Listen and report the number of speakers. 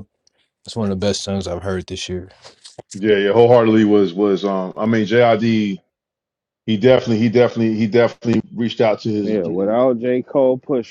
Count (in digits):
3